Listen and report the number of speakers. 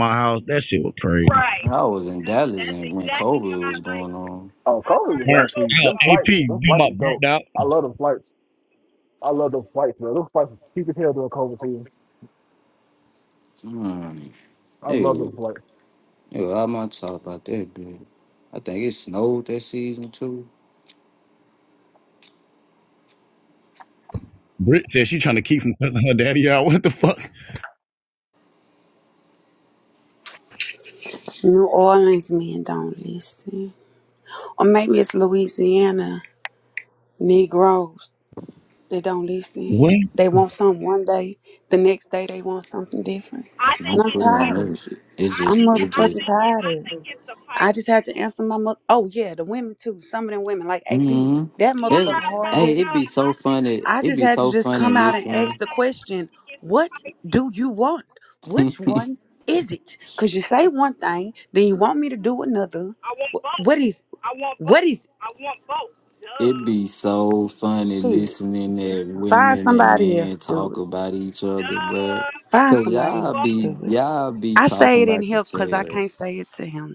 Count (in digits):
5